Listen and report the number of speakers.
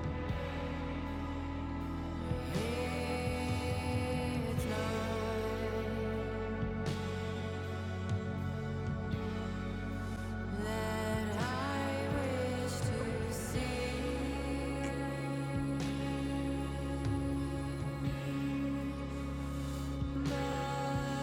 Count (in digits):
0